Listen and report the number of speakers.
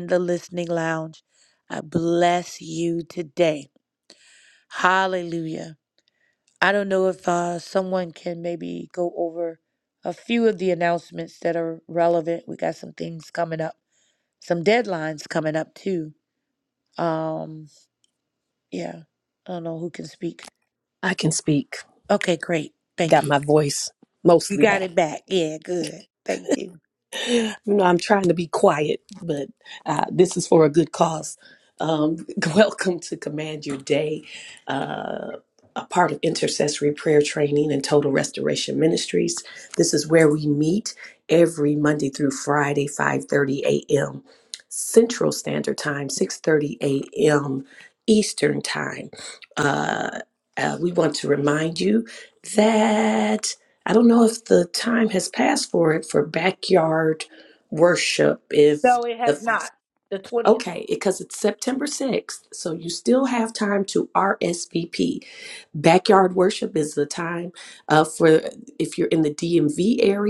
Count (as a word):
two